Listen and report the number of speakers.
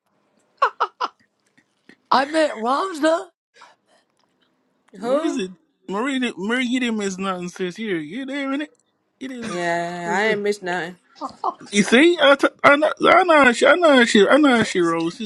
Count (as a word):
three